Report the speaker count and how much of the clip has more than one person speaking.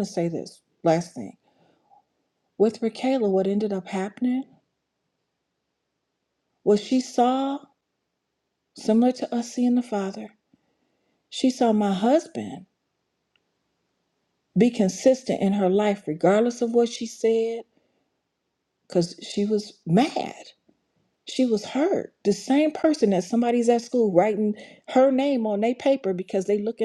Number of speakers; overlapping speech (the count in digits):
1, no overlap